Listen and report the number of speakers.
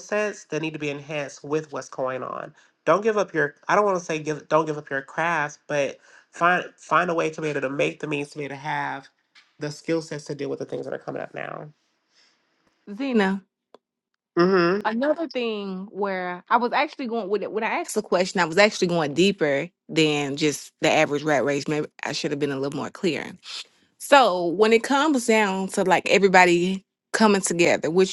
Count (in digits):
2